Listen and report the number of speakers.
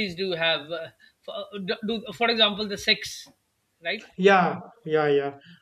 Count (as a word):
two